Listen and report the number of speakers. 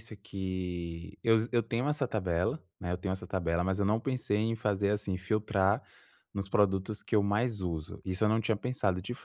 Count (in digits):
1